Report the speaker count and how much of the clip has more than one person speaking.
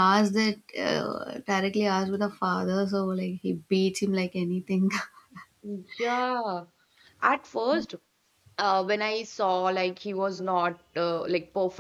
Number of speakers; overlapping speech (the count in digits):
2, no overlap